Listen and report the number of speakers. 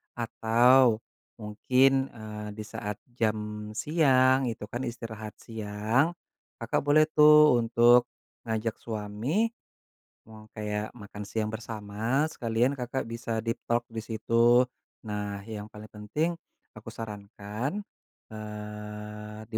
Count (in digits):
1